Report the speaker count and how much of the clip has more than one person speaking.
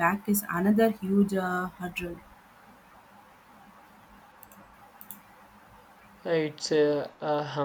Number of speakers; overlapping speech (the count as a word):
two, no overlap